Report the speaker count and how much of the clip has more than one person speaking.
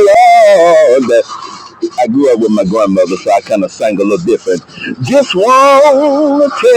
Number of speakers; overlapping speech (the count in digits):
1, no overlap